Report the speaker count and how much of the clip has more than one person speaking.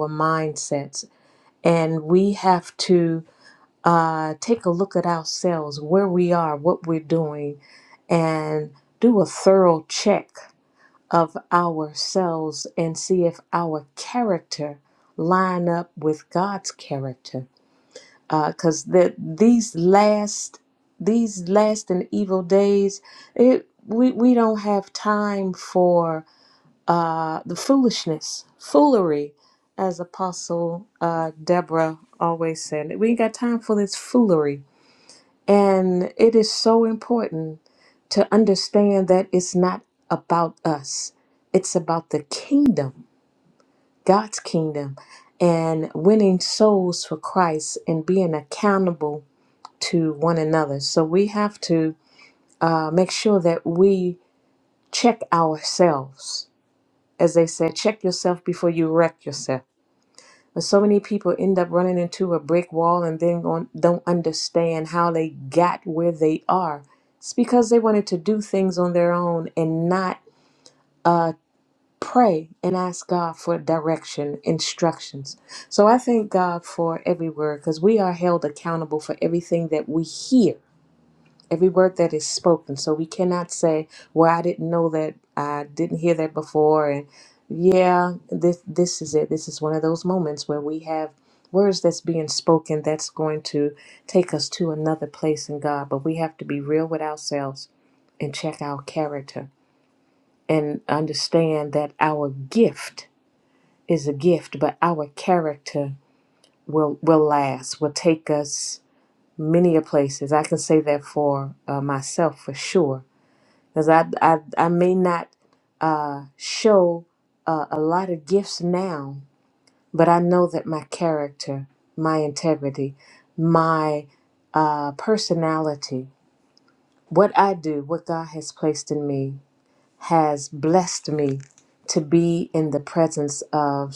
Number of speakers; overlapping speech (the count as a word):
one, no overlap